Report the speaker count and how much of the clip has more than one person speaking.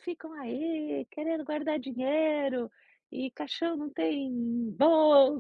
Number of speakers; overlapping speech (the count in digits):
1, no overlap